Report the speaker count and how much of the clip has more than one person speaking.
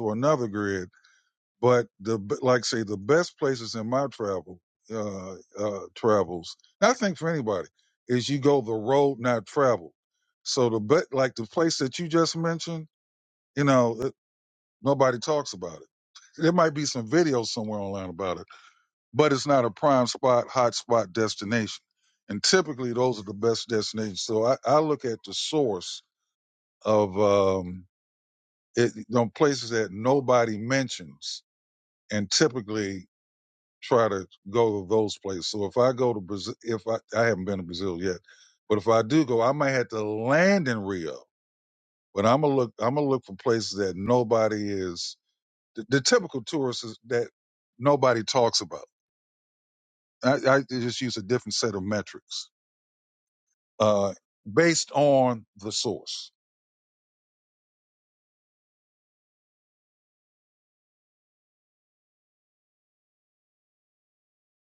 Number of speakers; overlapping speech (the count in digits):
1, no overlap